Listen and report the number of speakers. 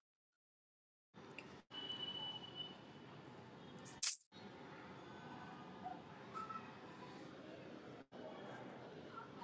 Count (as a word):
zero